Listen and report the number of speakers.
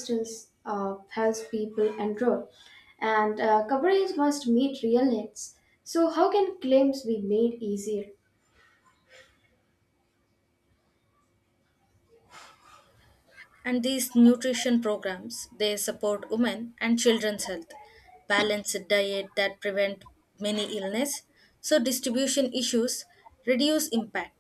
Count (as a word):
two